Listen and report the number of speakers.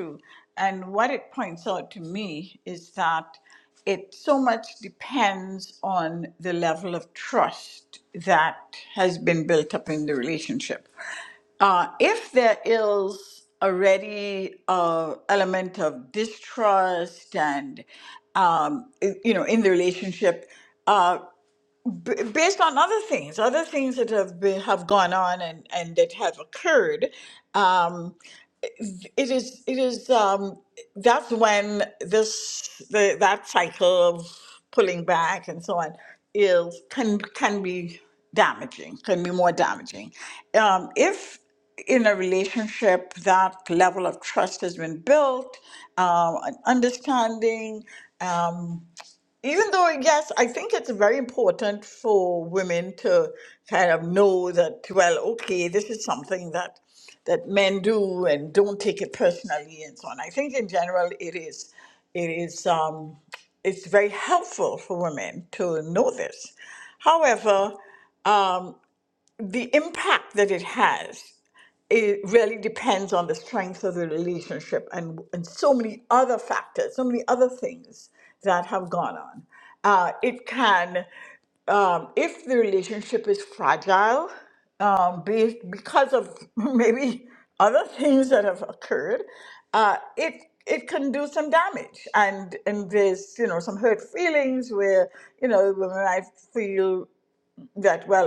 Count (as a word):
one